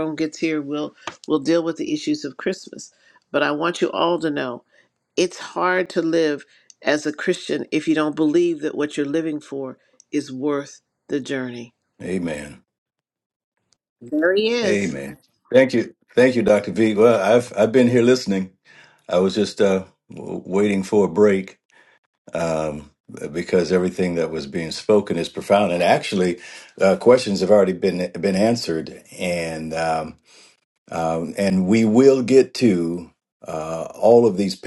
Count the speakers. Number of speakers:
two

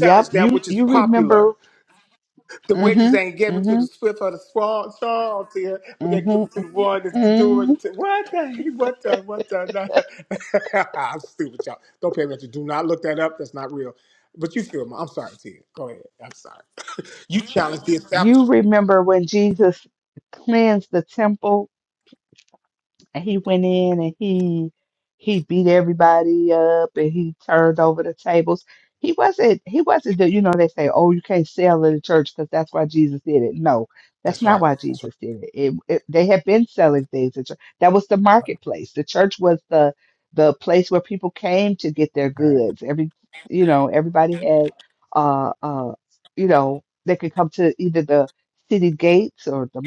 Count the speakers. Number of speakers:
two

